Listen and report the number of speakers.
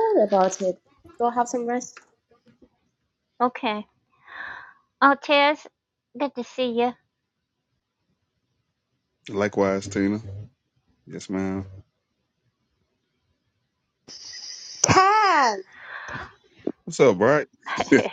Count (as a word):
three